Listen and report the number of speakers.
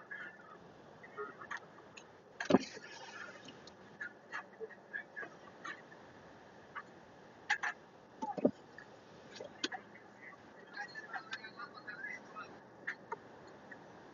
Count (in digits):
0